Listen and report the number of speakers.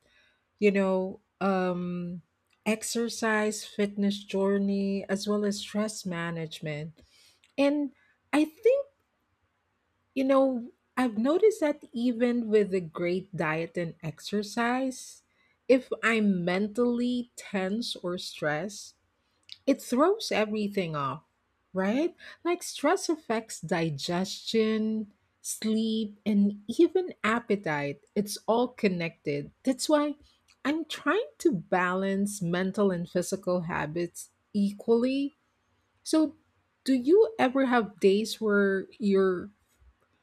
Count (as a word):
one